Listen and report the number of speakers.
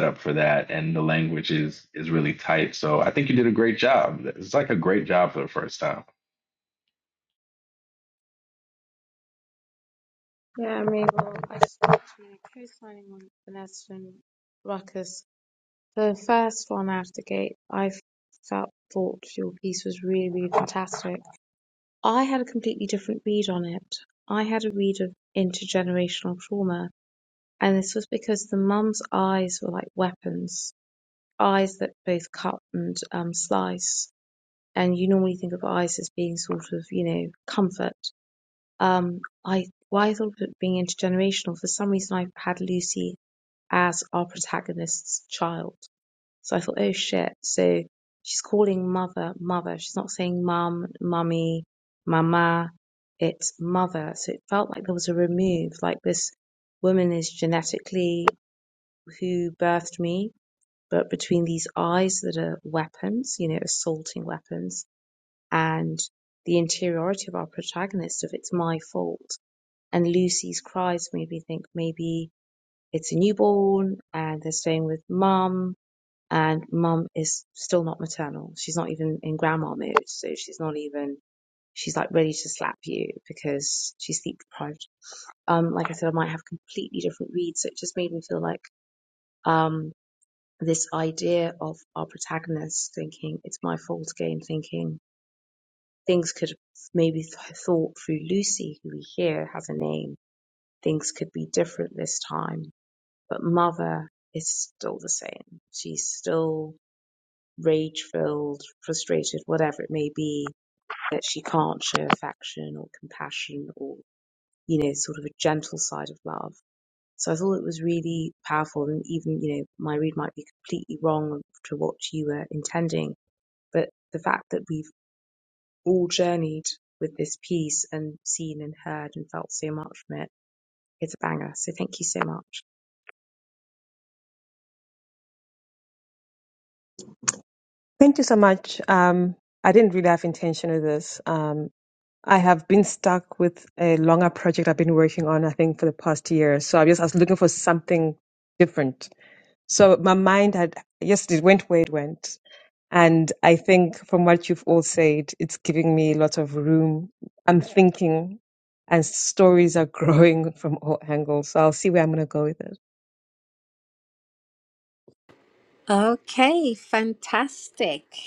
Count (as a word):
four